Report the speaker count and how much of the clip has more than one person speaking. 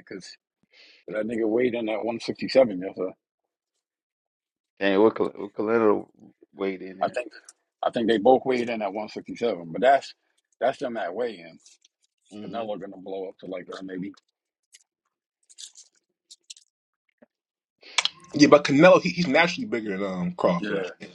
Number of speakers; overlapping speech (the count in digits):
3, about 3%